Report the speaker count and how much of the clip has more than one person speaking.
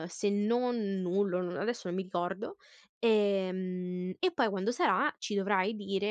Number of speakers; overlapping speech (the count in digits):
1, no overlap